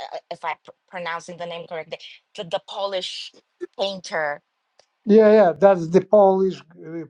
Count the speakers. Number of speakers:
2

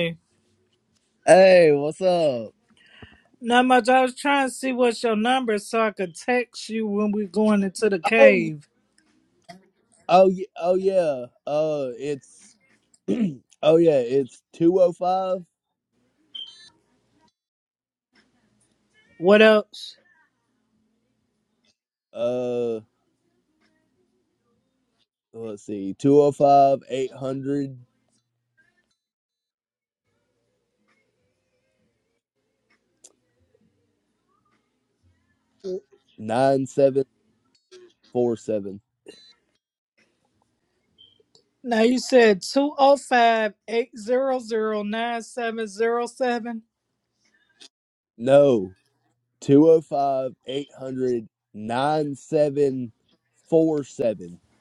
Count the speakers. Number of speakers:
2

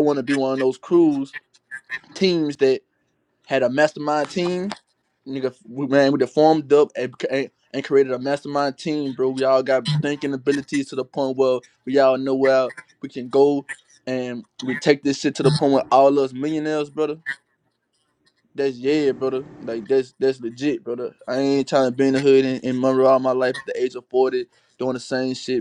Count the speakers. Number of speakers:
1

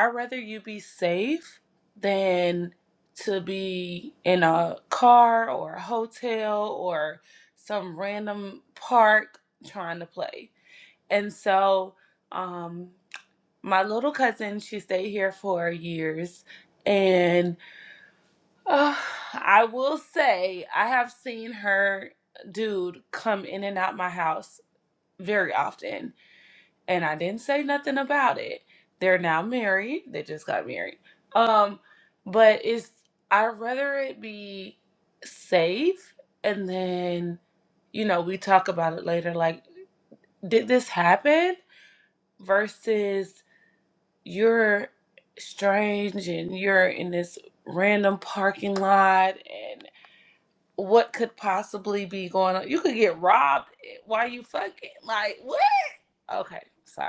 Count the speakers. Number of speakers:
1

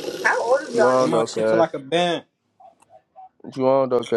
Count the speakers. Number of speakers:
3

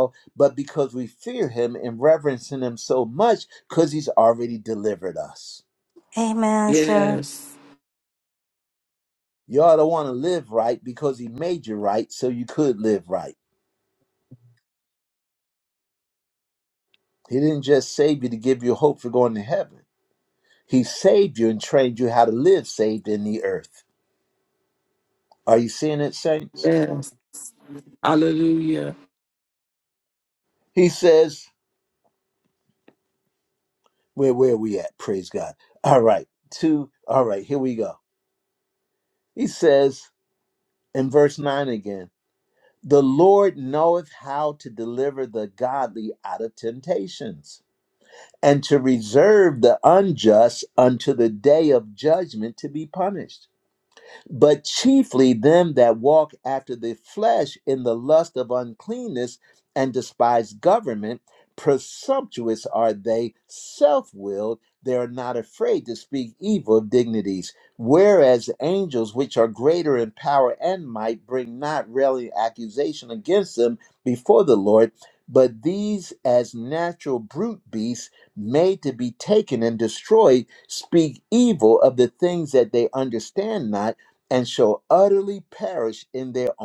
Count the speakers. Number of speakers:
3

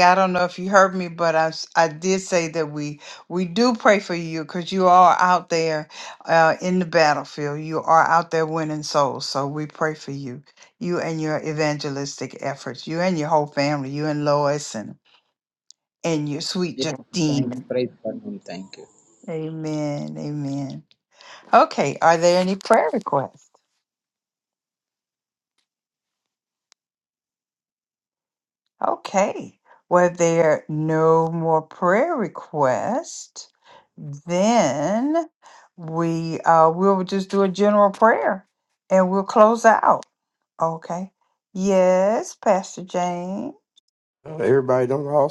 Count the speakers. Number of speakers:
3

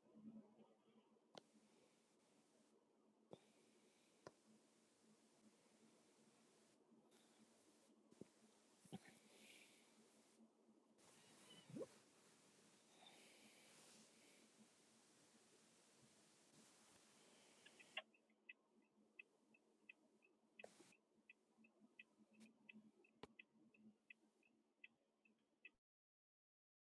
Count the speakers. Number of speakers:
0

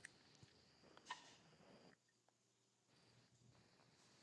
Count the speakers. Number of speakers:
0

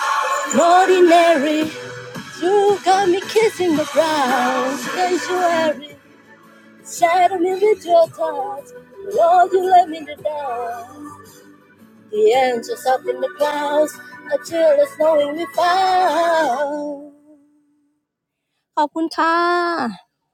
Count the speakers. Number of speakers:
1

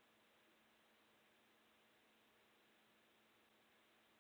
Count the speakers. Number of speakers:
0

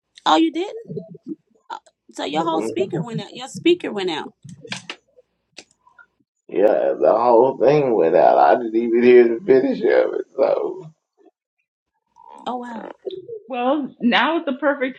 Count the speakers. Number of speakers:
3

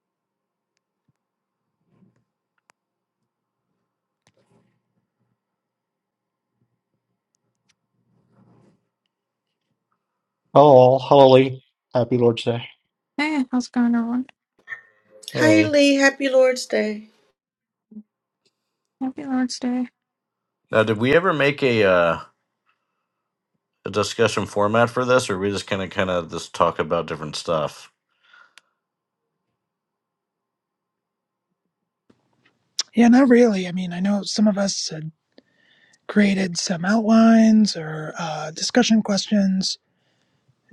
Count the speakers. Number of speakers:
5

